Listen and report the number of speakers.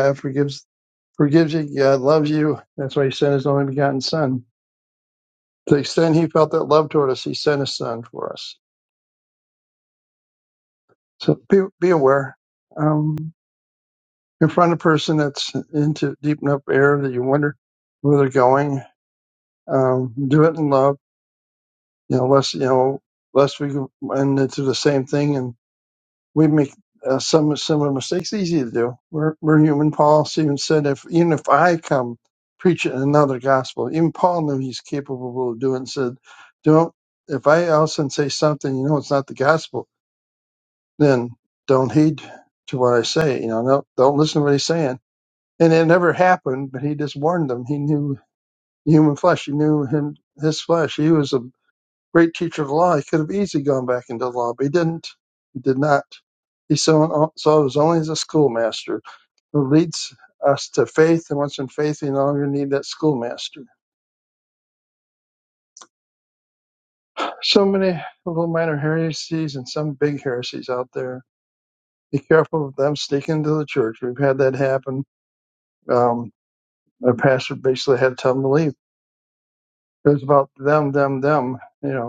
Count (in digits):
1